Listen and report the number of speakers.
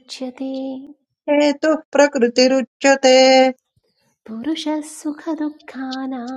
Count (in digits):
2